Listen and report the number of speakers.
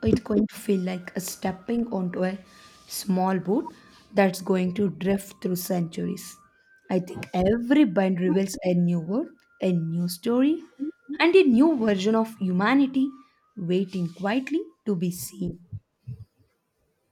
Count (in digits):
1